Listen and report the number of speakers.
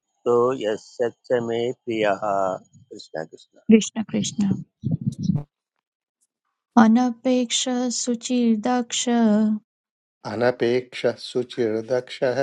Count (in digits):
3